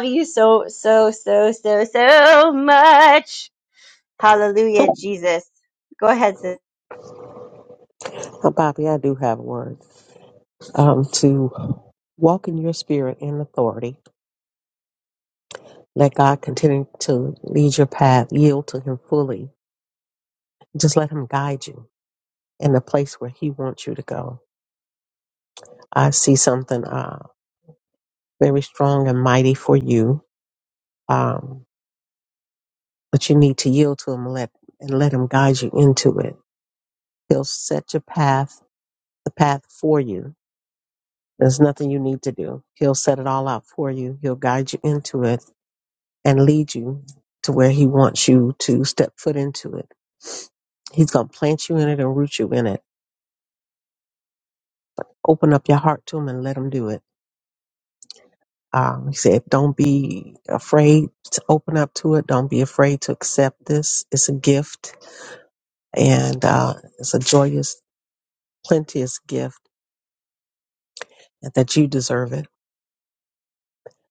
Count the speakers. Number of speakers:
two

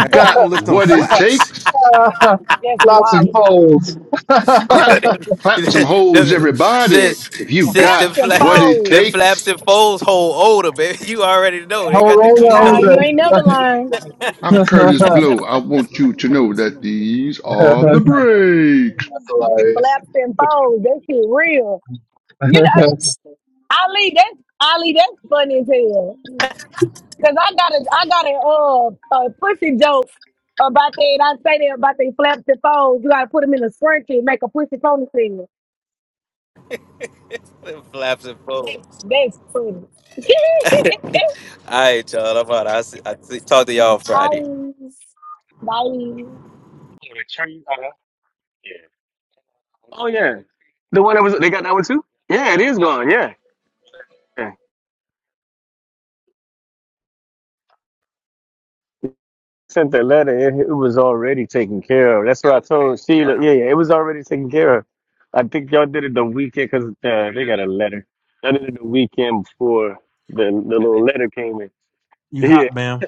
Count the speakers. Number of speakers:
six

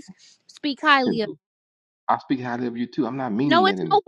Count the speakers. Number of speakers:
two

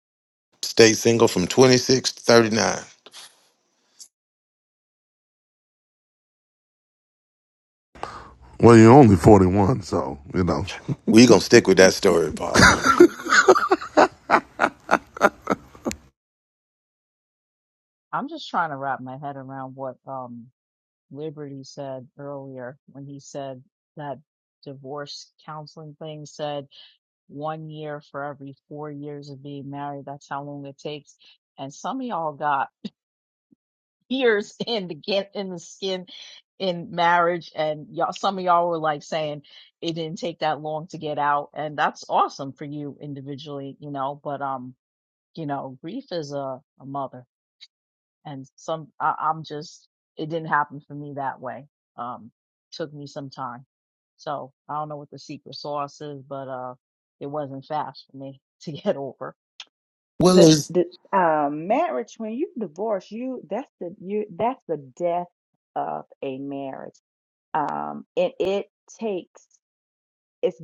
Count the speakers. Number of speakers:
four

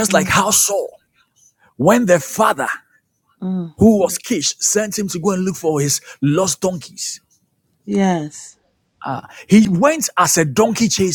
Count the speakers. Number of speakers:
two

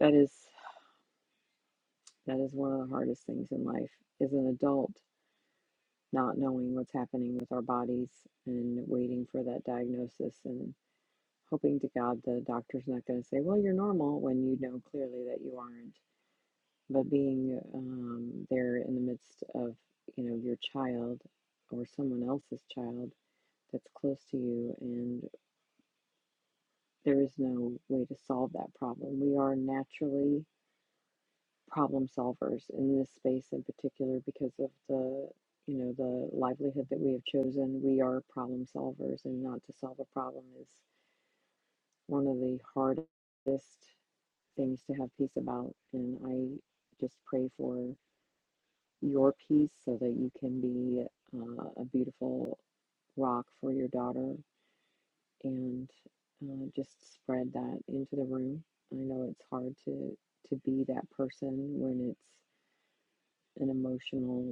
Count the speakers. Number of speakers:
one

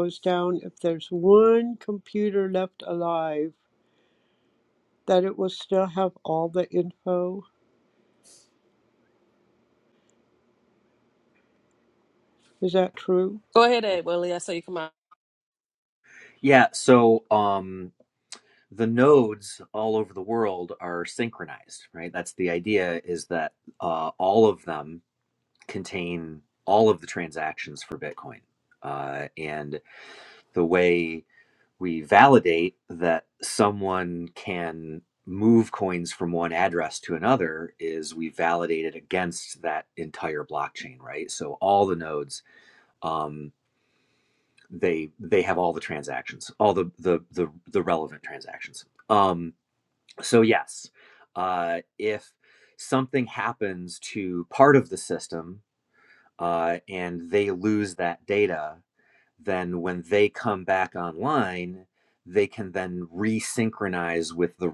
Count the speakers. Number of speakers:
three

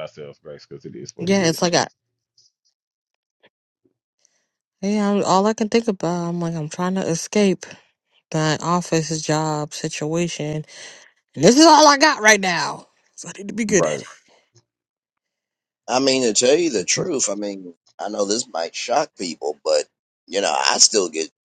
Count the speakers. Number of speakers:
three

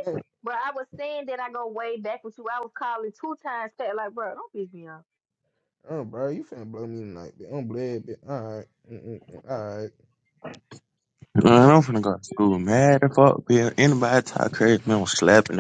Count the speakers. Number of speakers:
three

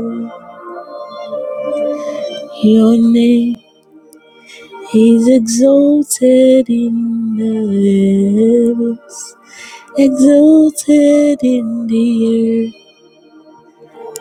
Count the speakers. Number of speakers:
one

